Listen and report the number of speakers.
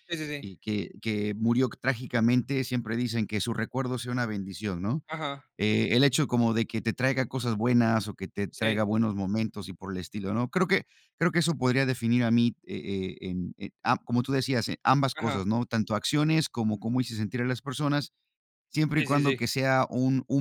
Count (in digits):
2